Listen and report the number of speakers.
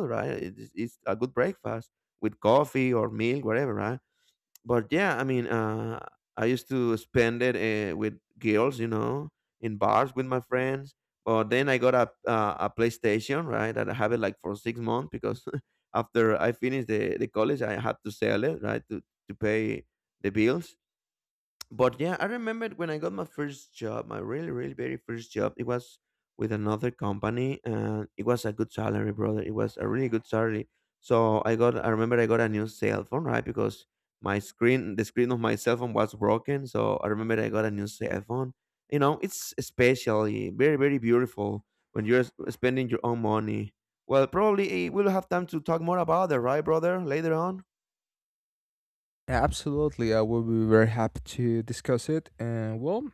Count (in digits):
2